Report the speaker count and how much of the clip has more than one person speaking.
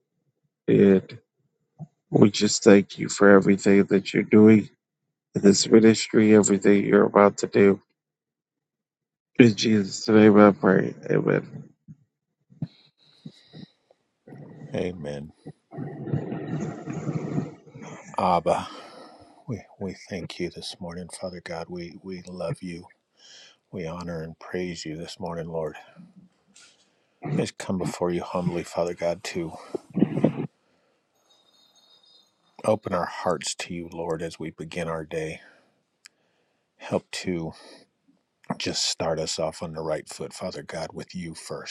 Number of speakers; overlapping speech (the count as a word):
two, no overlap